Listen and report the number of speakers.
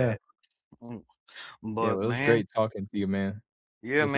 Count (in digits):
2